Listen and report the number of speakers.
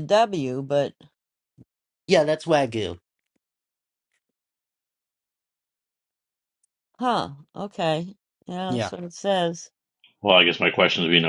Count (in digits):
3